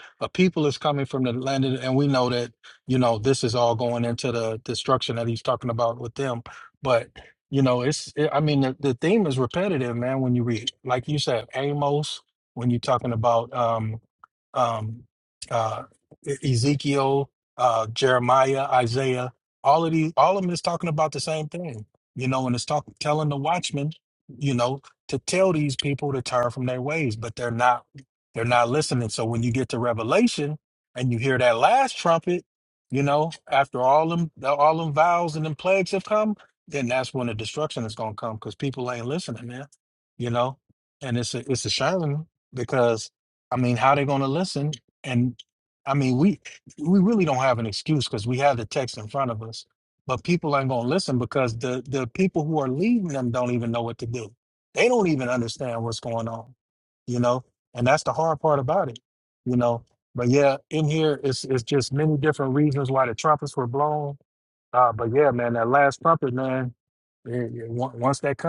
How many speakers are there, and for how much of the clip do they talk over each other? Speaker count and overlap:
one, no overlap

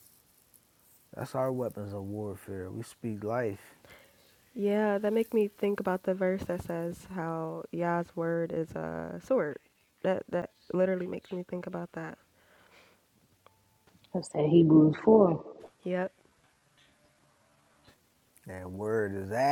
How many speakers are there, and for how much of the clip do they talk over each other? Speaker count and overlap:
three, no overlap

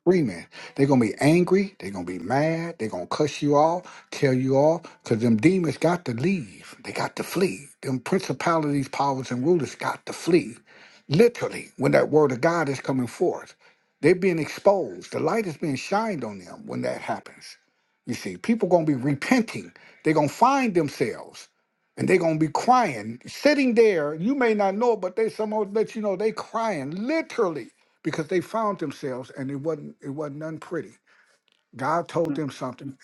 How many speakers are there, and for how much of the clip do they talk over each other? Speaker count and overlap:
one, no overlap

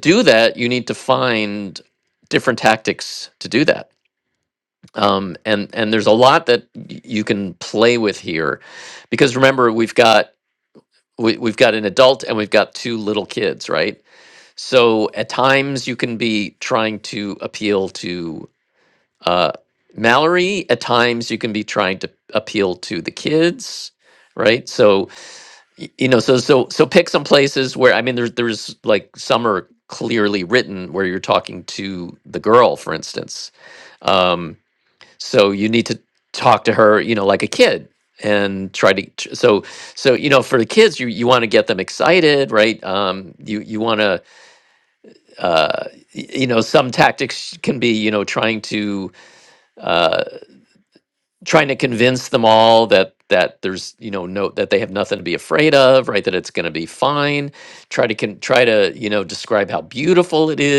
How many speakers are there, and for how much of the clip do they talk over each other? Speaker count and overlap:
one, no overlap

